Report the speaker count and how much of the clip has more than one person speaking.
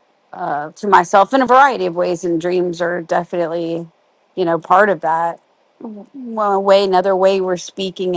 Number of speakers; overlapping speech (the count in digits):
1, no overlap